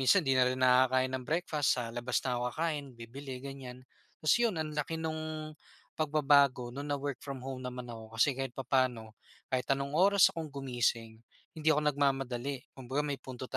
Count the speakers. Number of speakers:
1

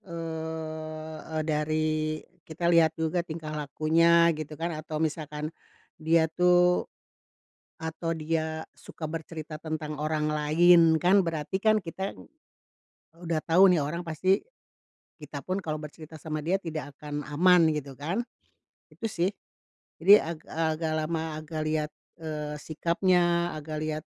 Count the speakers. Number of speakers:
1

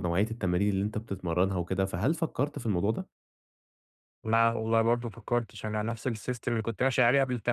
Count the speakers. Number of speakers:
2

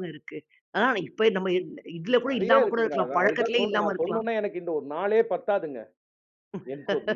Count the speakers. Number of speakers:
2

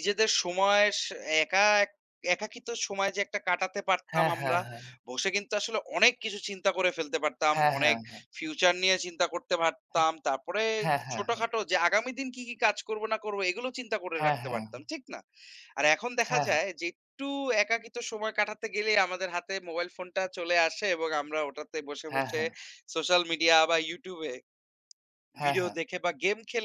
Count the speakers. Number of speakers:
2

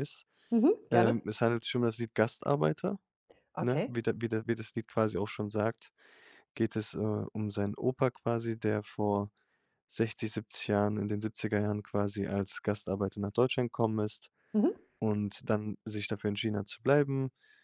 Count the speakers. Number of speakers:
2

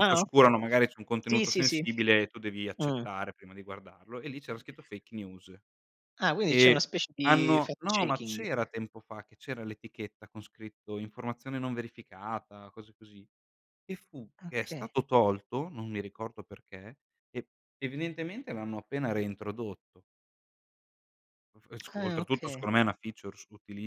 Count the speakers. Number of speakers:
2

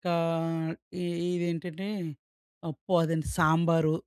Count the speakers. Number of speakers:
1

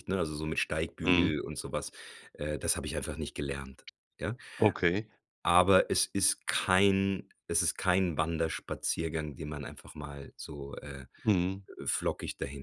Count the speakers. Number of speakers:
2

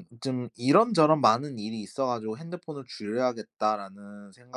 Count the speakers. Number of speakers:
1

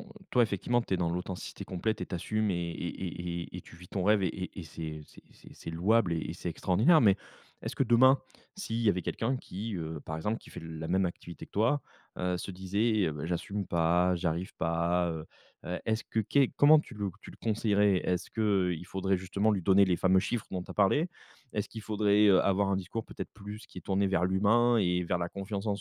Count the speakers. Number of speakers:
1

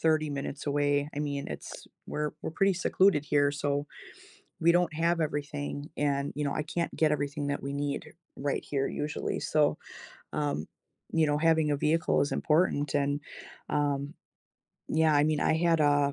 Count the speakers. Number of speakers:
1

